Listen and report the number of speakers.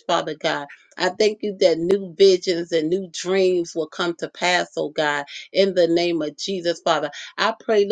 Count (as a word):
one